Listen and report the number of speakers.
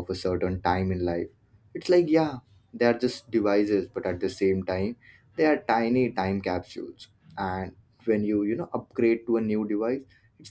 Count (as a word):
one